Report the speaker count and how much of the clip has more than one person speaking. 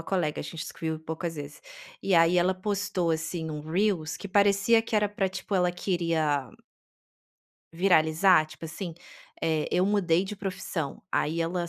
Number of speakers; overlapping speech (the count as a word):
one, no overlap